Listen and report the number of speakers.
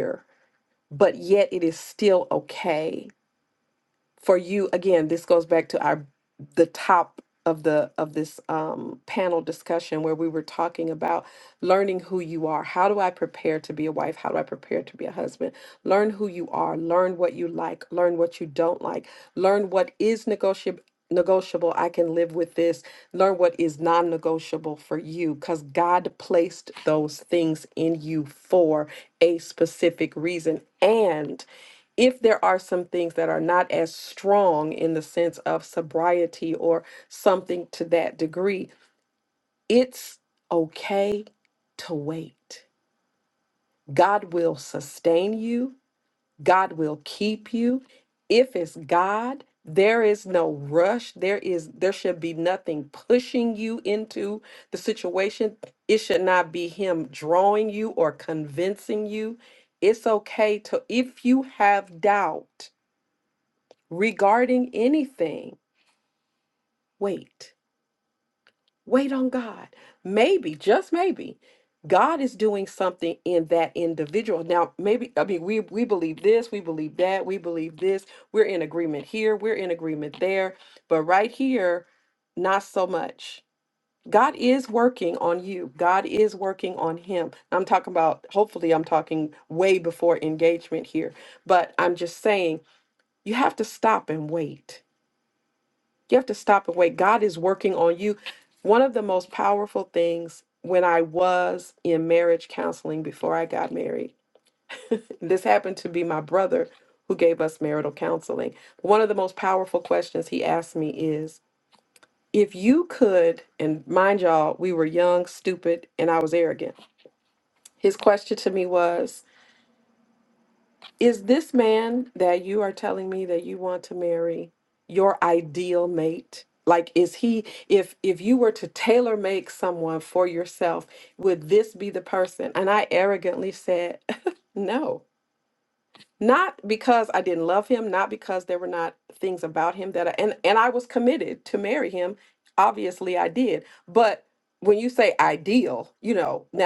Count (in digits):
1